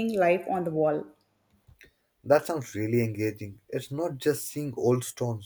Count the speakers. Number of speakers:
2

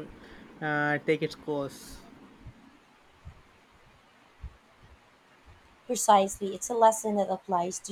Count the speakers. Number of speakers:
2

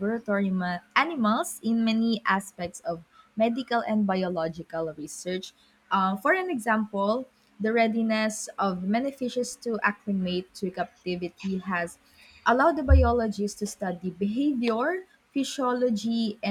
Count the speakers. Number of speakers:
1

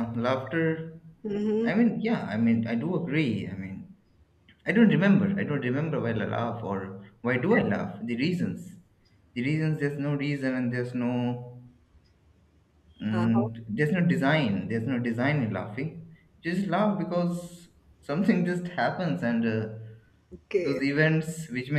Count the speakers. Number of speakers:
2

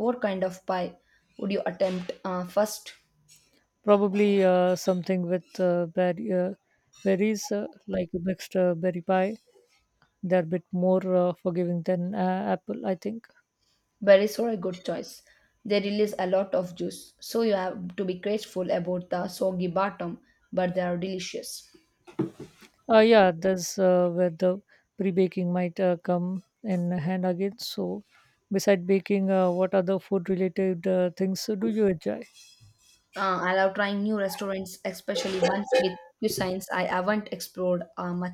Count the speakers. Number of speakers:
2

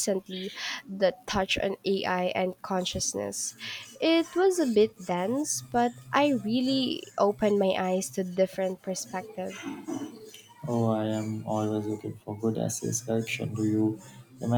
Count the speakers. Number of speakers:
2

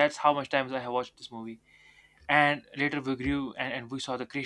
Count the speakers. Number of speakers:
1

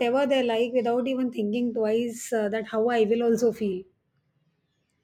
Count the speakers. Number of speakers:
1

